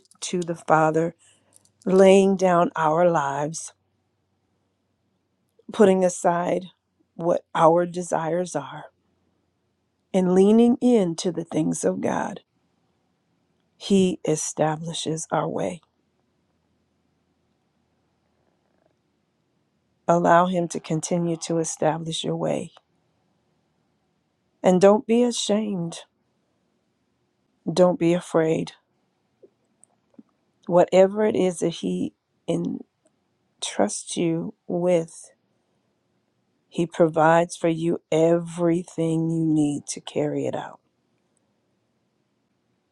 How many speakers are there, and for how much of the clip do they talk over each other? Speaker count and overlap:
1, no overlap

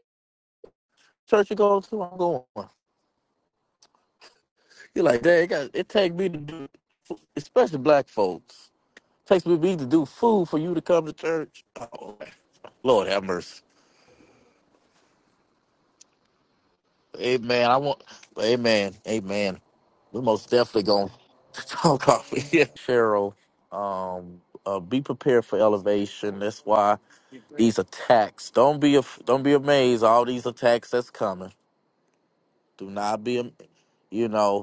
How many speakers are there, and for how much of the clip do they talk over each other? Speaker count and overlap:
1, no overlap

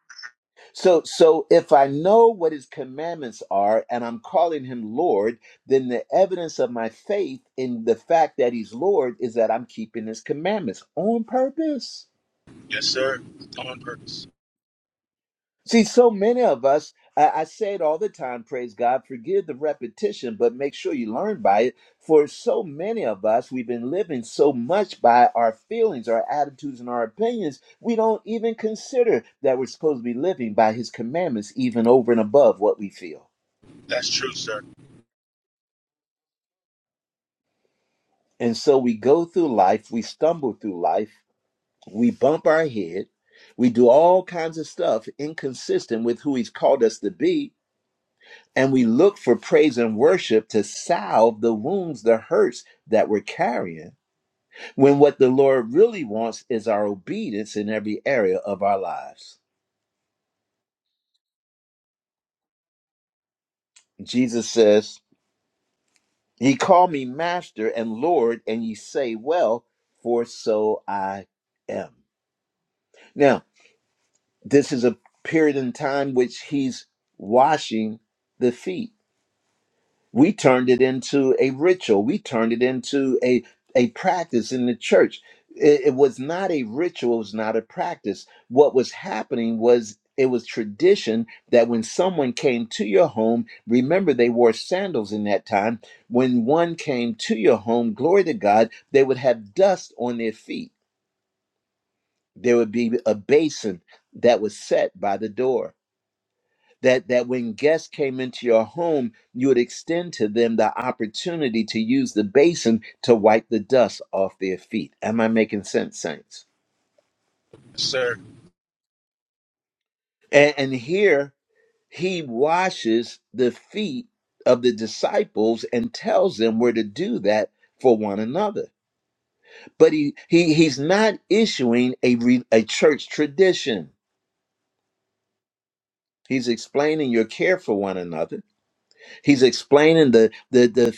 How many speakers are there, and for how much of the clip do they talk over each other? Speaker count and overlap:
2, no overlap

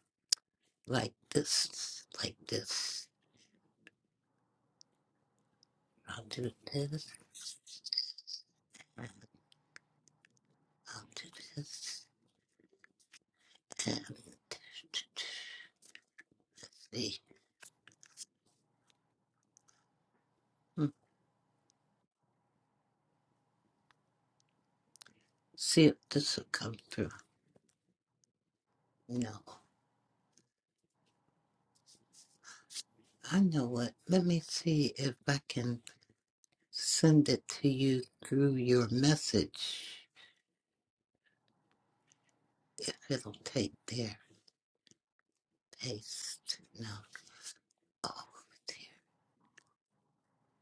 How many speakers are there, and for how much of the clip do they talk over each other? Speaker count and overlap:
1, no overlap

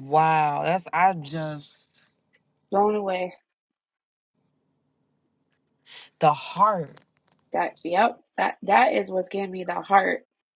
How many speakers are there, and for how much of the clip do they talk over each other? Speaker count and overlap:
2, no overlap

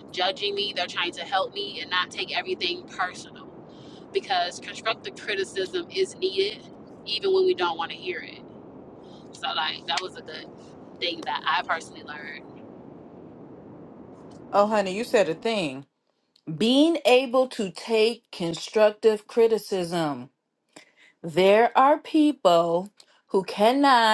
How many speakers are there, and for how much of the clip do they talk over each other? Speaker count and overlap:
2, no overlap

